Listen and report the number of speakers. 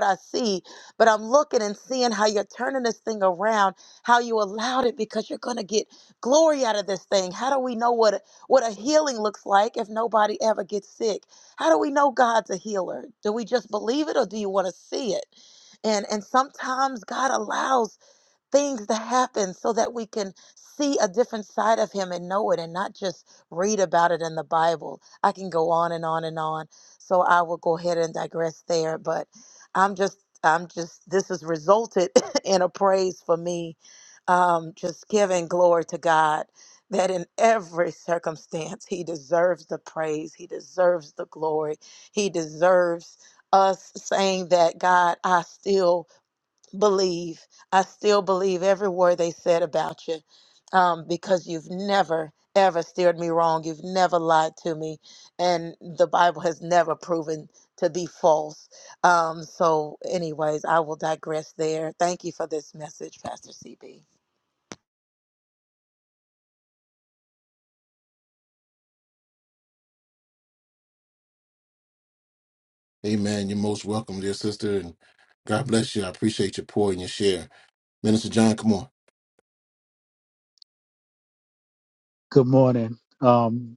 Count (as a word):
three